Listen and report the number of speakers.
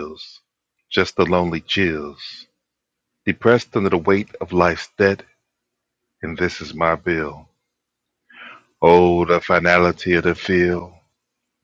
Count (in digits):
1